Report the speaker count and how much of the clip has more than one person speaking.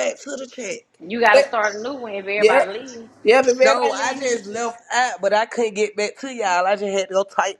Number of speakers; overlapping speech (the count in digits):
3, about 17%